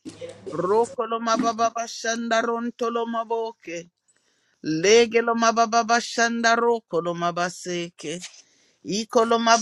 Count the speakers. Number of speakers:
one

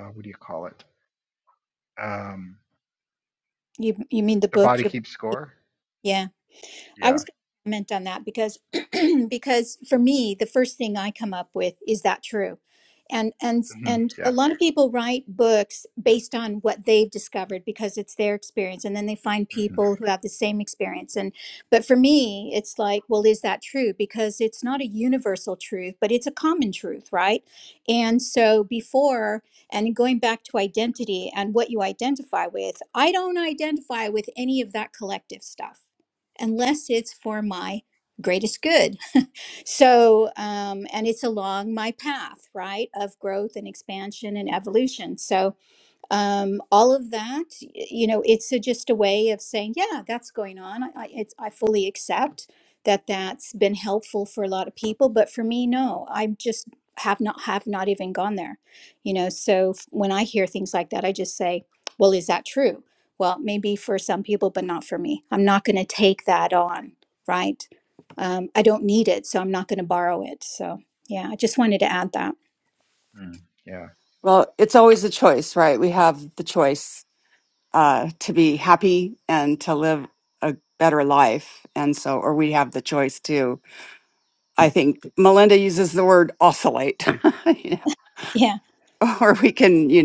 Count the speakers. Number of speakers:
three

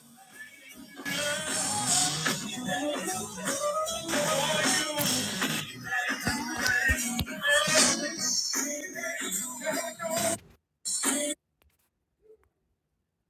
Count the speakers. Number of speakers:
zero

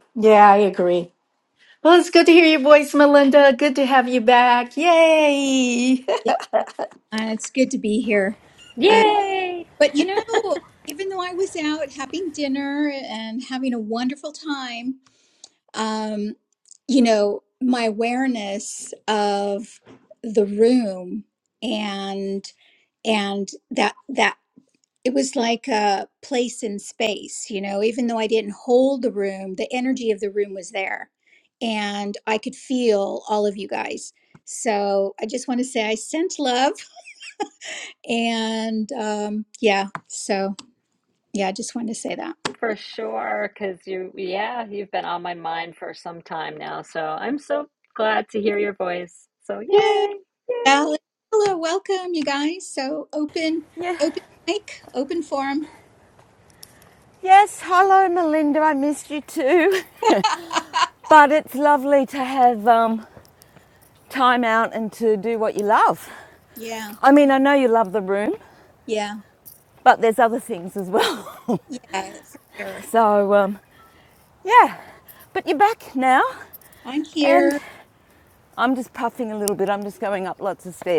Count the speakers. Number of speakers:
four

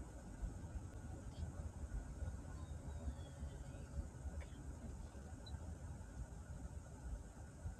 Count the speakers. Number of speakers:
zero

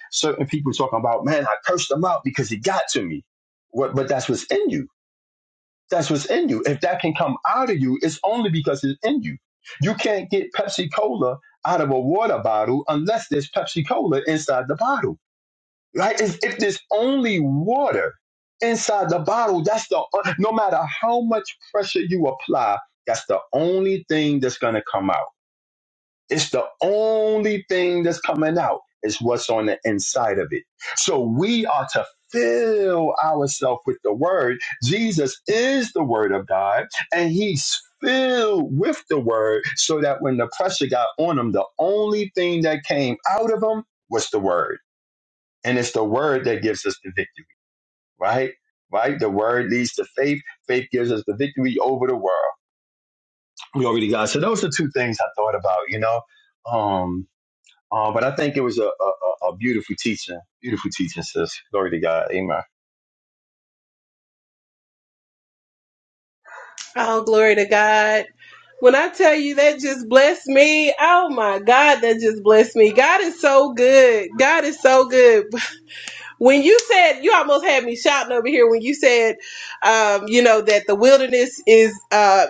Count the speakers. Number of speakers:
two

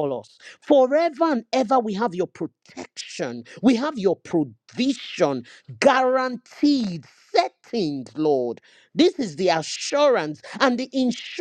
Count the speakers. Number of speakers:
one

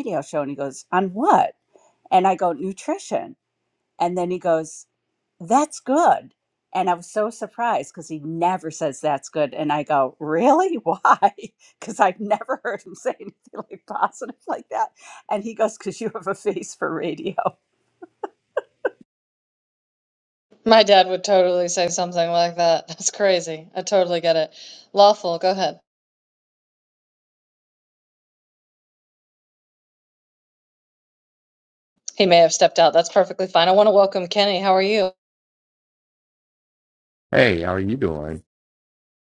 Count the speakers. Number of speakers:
three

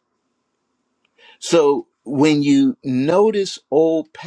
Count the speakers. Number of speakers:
one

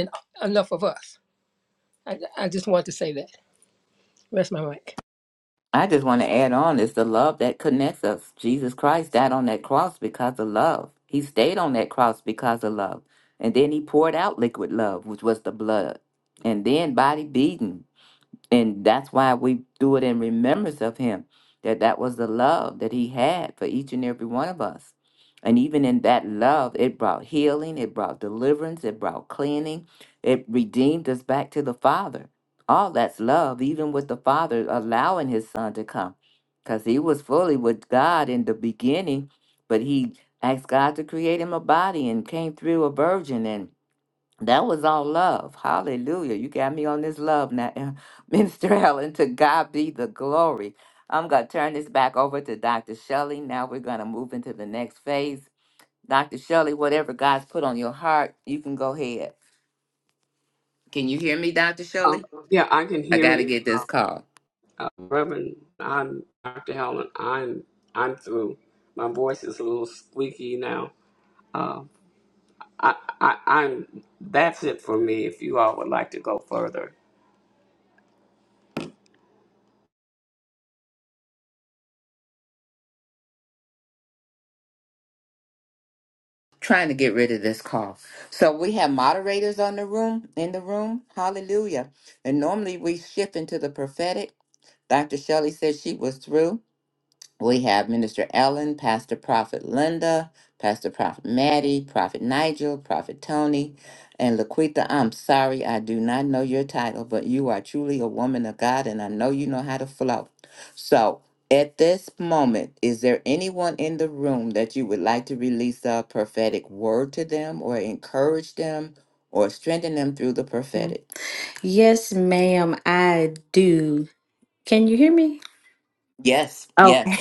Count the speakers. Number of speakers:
four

